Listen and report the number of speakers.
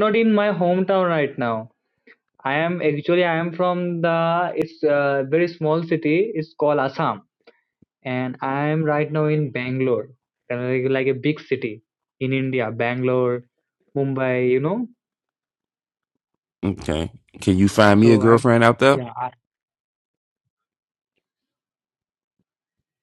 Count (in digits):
2